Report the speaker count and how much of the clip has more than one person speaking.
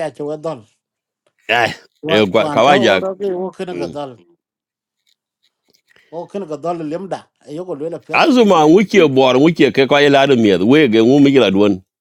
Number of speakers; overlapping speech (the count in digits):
2, about 8%